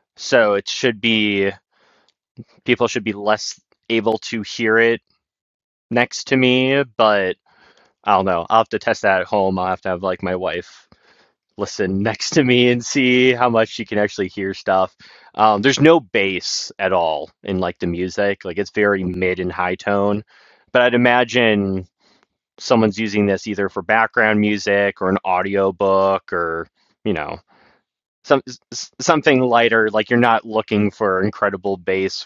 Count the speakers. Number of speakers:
one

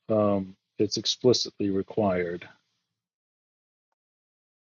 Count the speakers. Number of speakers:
one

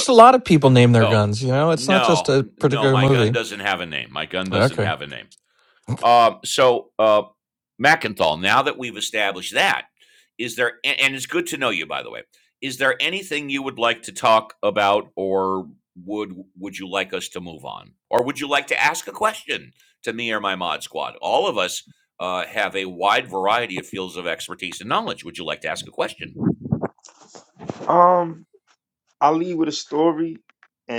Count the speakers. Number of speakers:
three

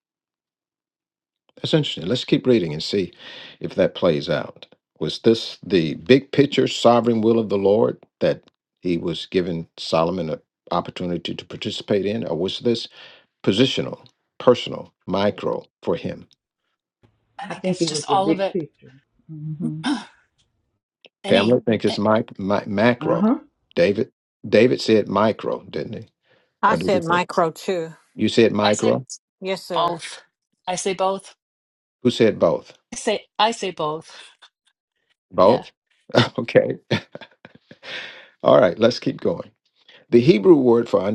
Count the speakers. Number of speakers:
four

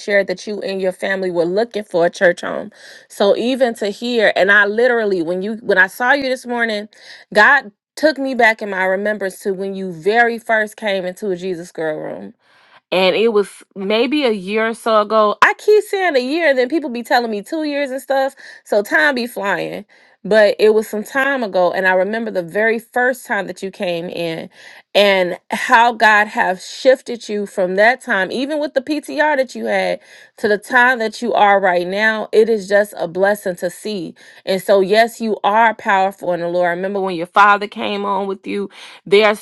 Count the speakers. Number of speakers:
one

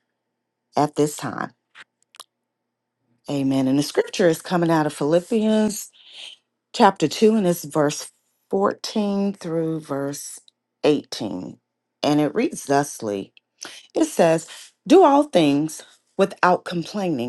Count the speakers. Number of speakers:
one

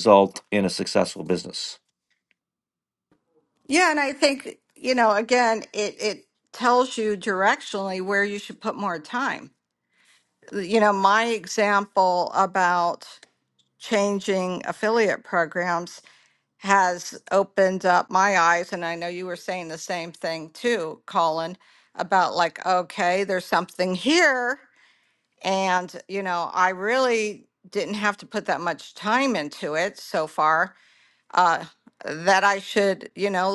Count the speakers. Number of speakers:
two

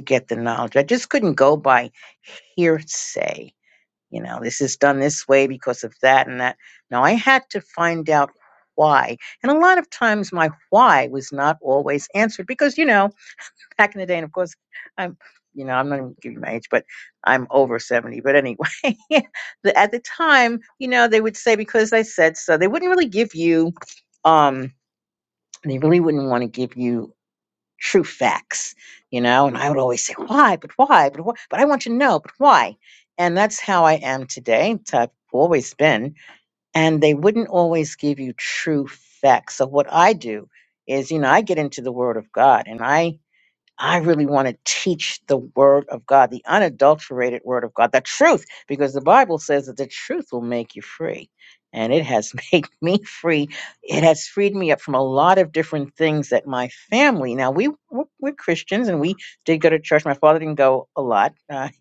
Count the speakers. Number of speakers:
one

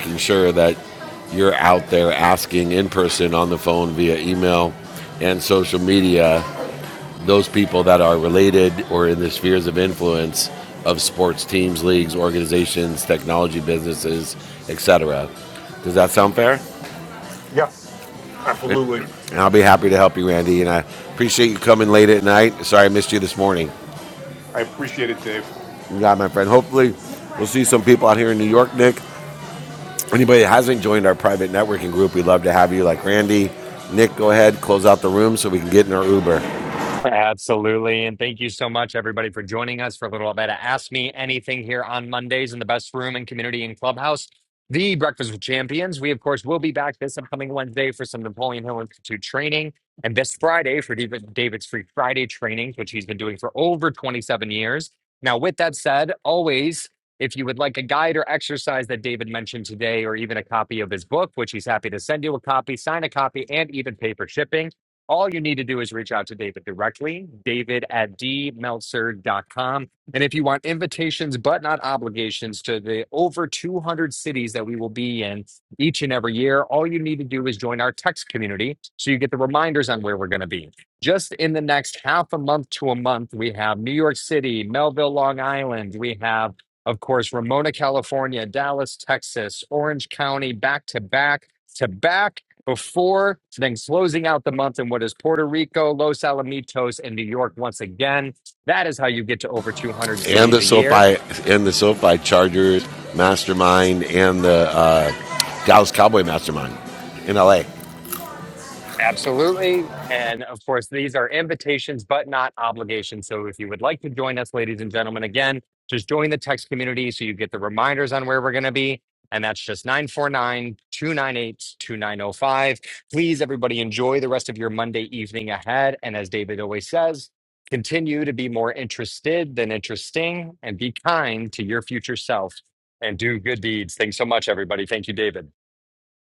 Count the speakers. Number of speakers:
three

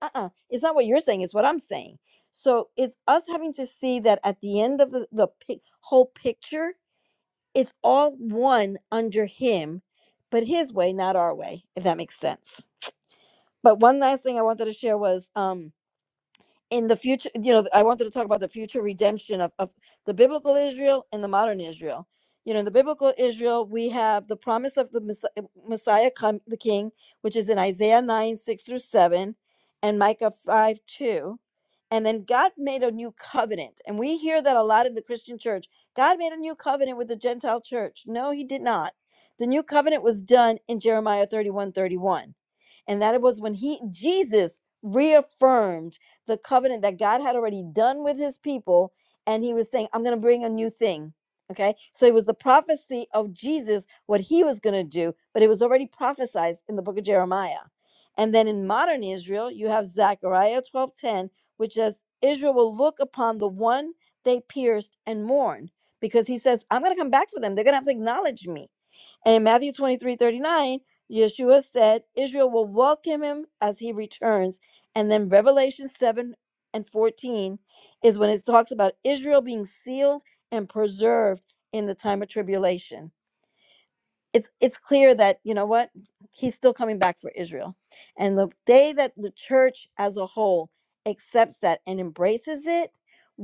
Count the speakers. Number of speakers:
one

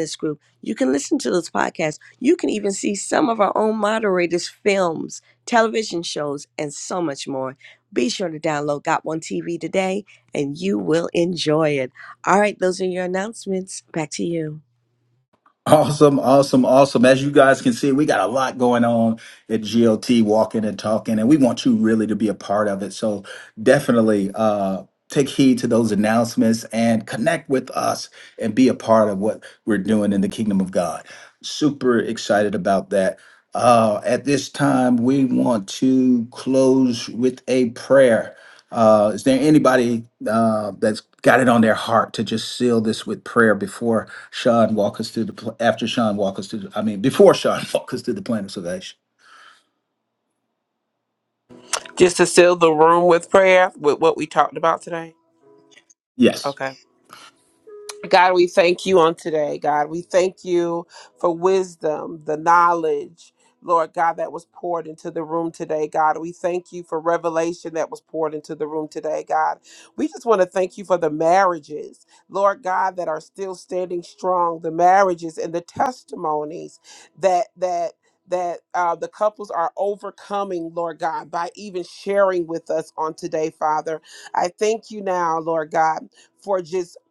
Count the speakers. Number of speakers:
three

